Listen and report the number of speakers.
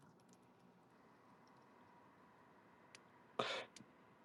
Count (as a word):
zero